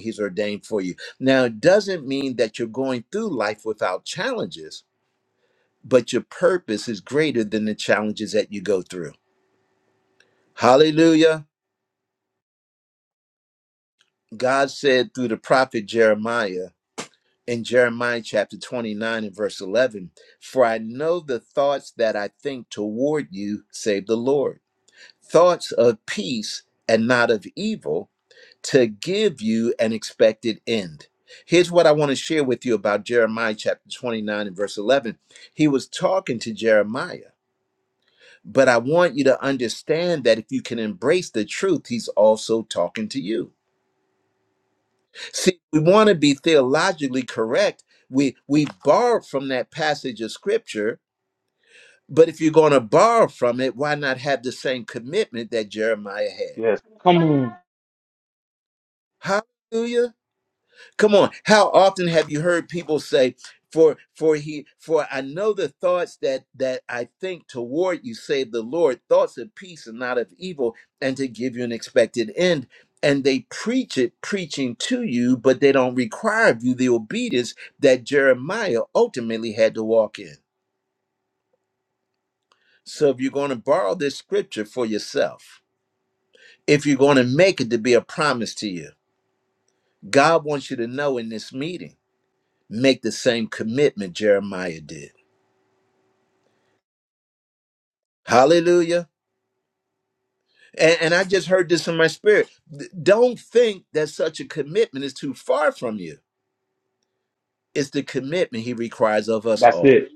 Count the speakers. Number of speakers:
two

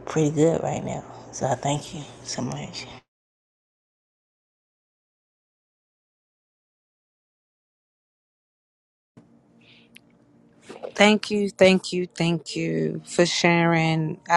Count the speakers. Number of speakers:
two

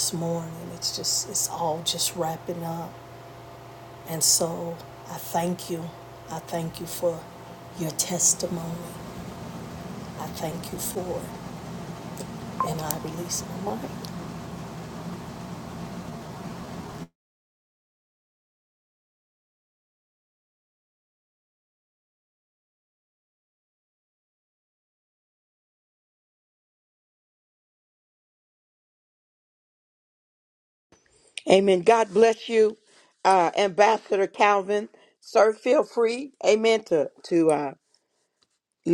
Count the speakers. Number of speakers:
two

